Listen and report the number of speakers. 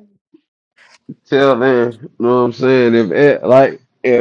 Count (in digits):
1